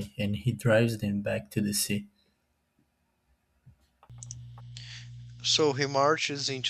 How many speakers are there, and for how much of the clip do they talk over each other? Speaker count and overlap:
two, no overlap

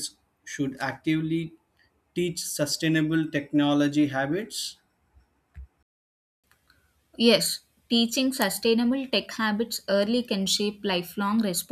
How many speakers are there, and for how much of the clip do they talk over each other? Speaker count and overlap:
two, no overlap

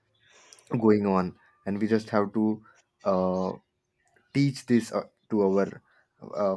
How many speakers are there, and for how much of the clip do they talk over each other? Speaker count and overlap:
one, no overlap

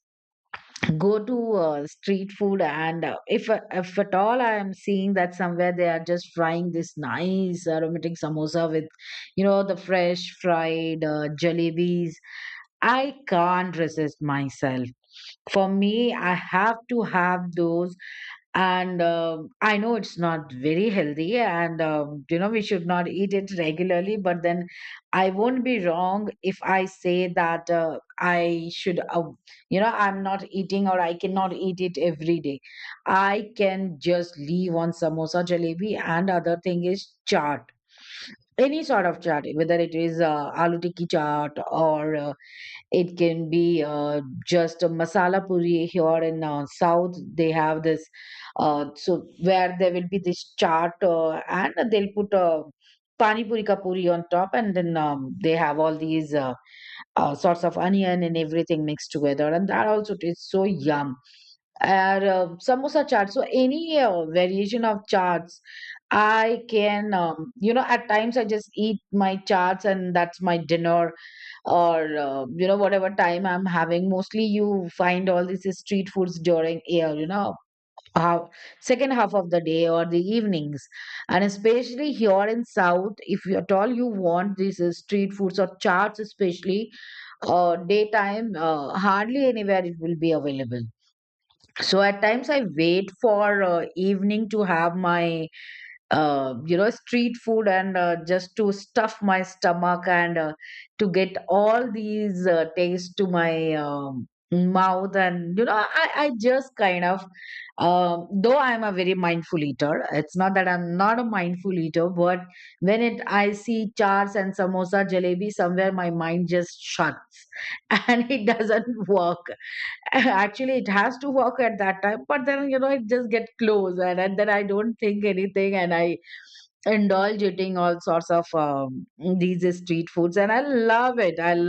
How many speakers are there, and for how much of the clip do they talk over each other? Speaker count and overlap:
one, no overlap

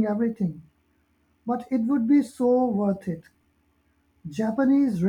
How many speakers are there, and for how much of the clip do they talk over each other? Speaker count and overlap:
one, no overlap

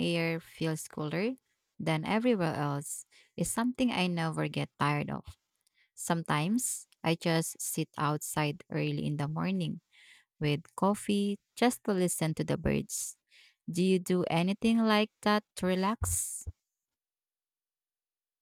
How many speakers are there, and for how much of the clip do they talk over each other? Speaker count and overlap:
one, no overlap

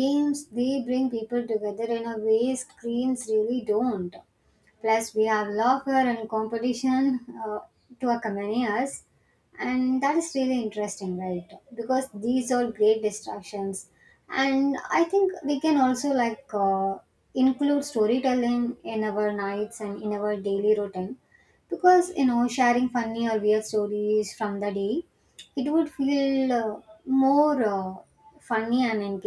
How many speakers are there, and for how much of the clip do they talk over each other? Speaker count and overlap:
one, no overlap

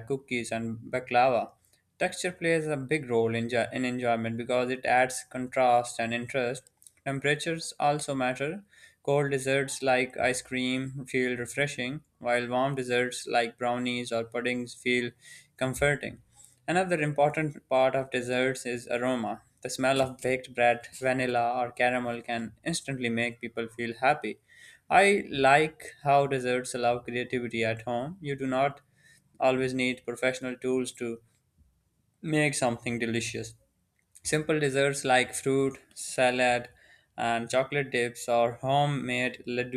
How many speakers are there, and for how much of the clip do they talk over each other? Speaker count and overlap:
one, no overlap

